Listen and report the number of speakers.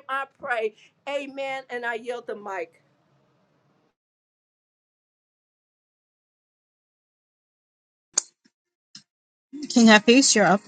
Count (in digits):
2